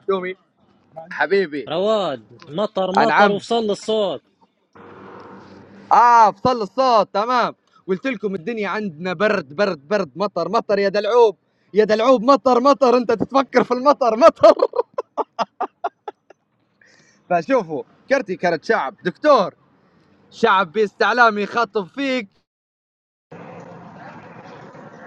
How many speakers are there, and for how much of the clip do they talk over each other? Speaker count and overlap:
two, about 2%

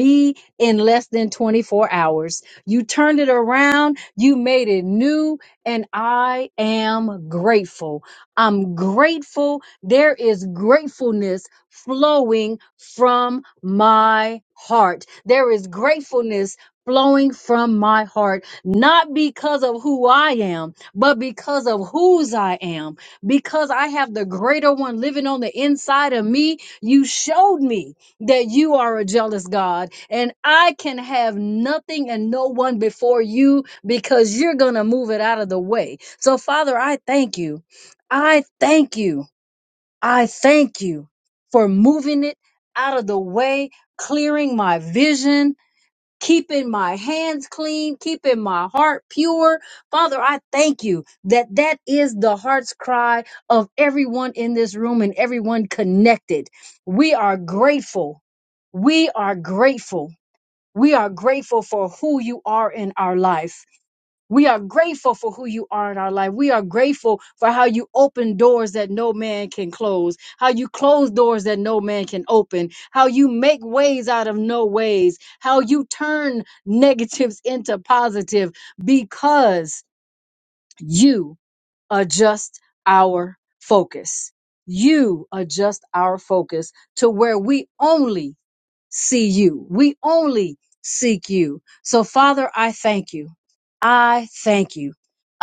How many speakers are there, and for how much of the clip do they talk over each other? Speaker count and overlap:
one, no overlap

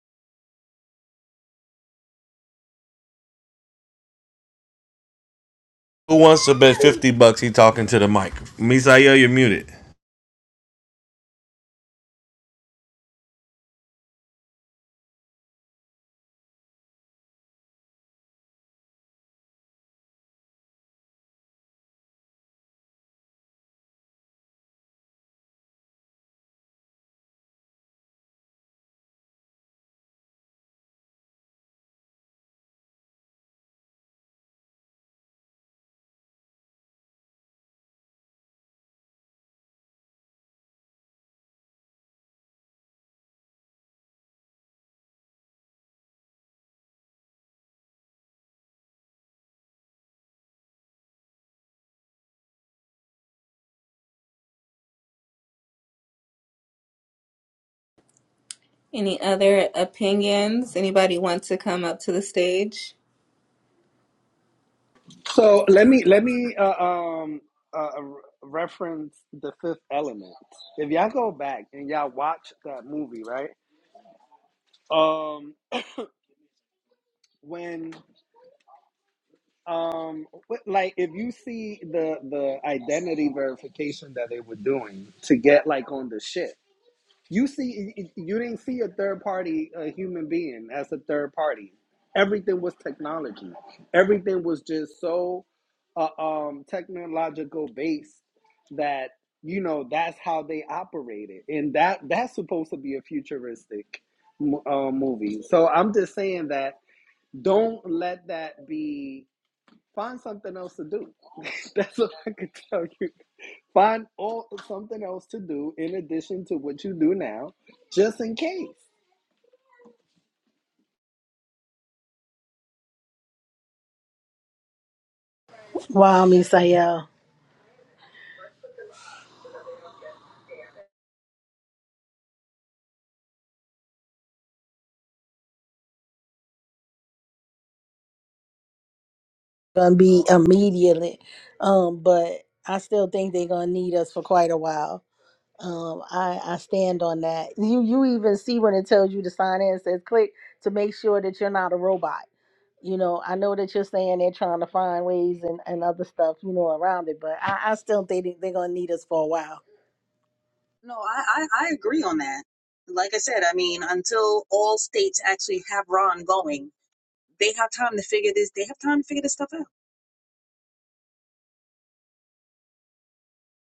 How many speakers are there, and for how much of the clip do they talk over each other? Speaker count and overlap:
five, no overlap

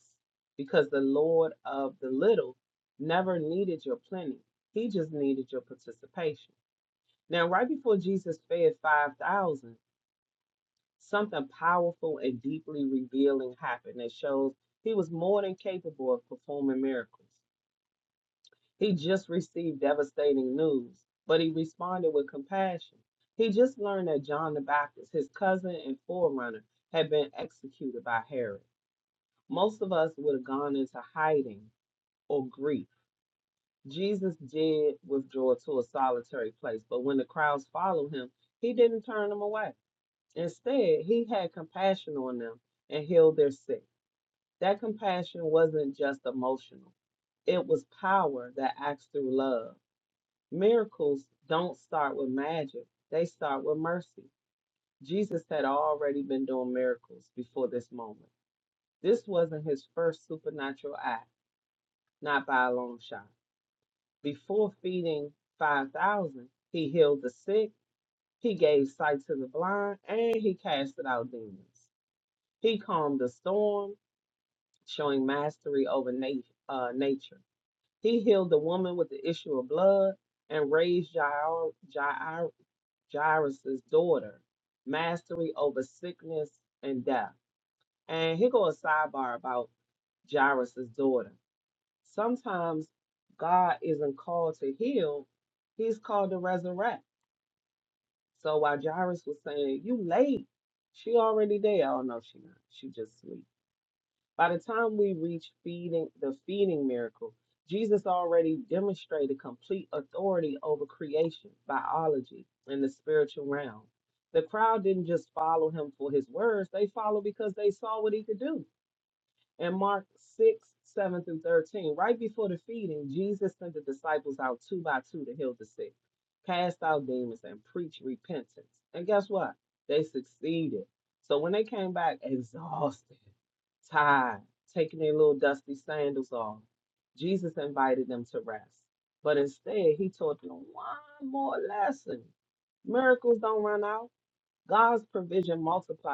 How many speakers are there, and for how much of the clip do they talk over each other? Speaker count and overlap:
one, no overlap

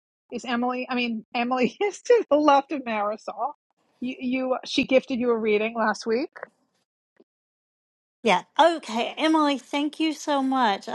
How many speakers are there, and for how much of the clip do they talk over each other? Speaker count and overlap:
two, no overlap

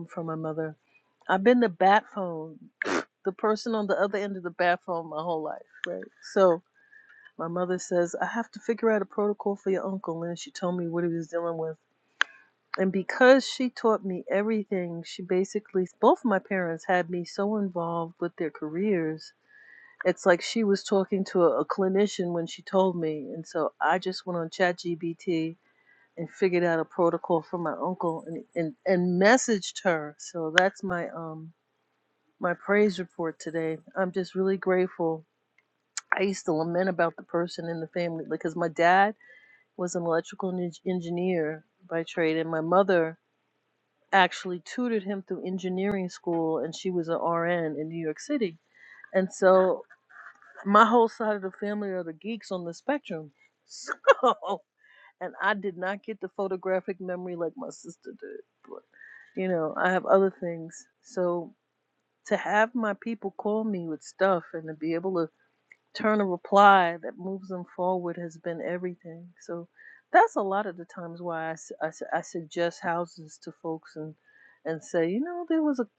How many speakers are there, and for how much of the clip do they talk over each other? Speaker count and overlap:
one, no overlap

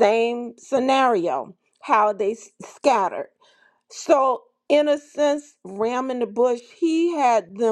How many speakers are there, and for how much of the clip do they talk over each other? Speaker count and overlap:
one, no overlap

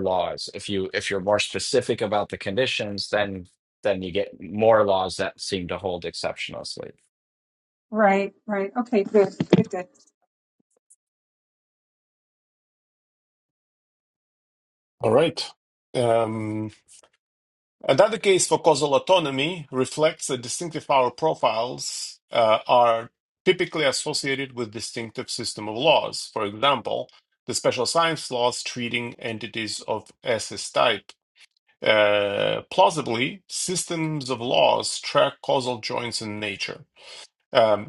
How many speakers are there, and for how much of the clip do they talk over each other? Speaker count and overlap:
three, no overlap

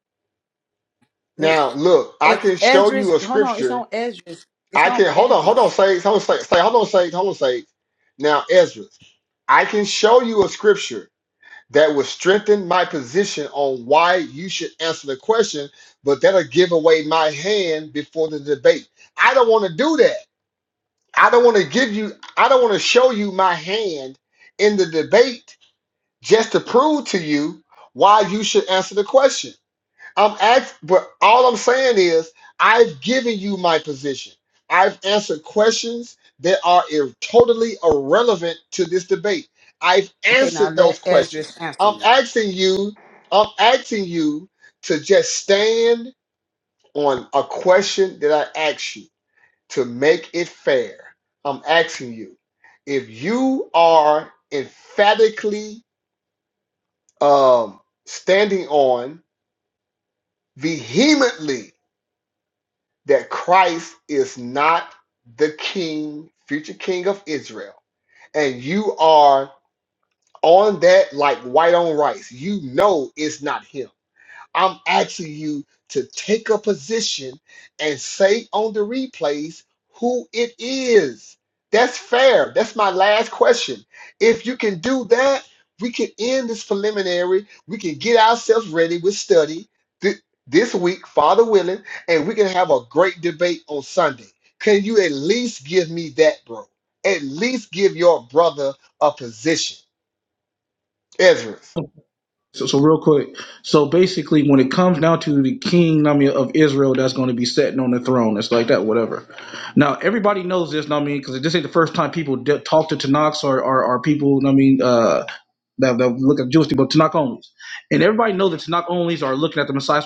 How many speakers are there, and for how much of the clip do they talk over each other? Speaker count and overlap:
three, about 3%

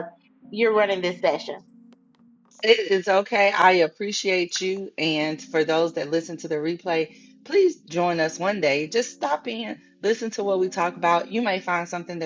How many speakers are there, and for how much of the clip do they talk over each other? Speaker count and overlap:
two, no overlap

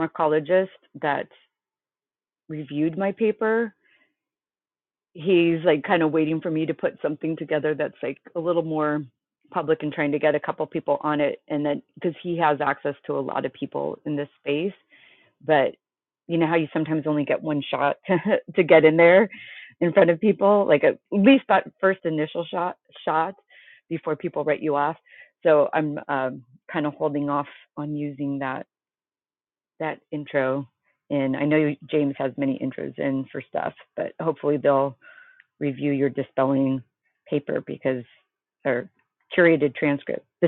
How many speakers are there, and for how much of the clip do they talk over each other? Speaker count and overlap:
one, no overlap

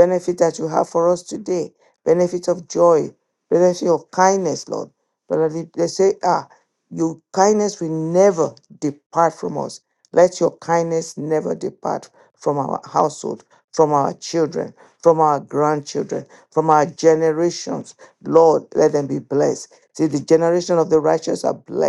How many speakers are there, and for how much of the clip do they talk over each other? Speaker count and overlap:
one, no overlap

